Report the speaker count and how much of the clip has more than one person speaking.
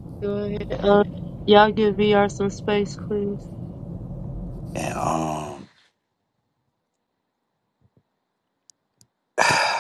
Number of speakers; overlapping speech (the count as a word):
two, no overlap